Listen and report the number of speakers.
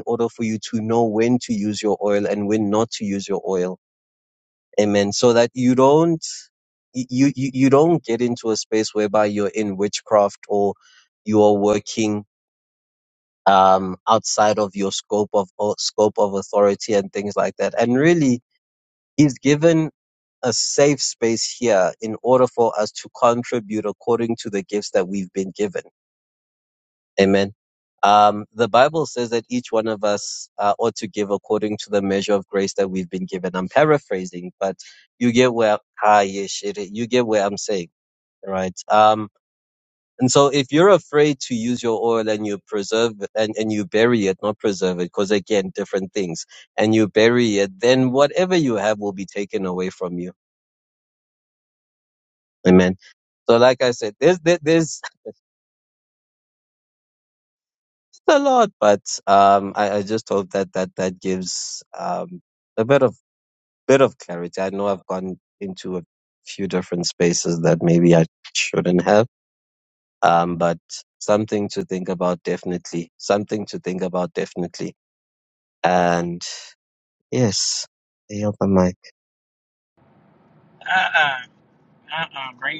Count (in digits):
2